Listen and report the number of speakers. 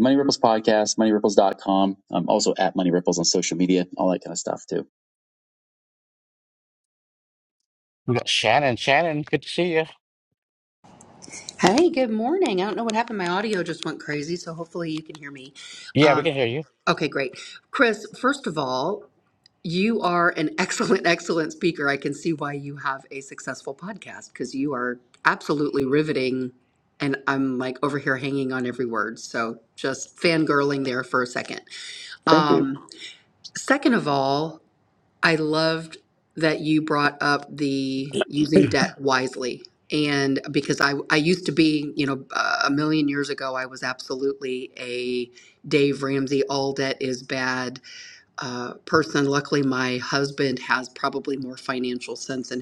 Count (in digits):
3